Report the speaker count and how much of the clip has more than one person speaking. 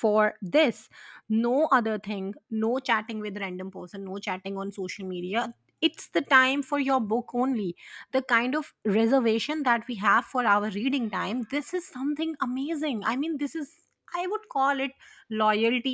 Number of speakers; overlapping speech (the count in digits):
1, no overlap